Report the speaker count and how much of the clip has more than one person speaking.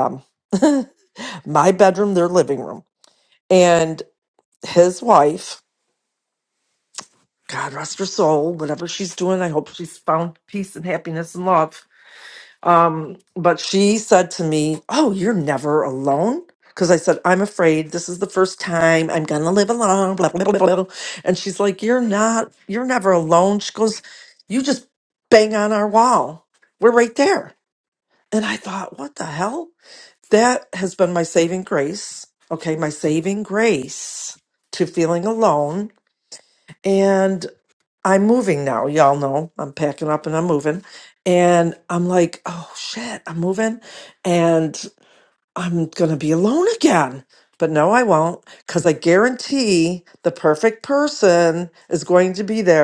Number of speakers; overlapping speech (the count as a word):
one, no overlap